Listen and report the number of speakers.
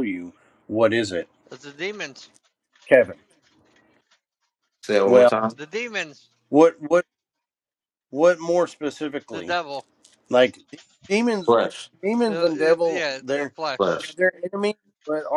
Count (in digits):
3